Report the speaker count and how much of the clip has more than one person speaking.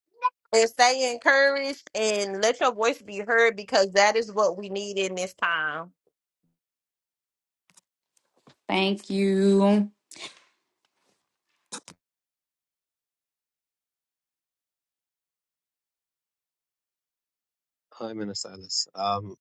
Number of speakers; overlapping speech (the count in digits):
3, no overlap